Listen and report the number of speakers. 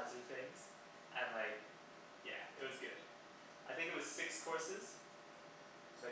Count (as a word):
one